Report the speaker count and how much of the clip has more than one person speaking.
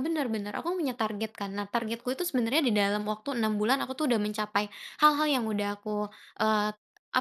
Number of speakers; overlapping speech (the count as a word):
one, no overlap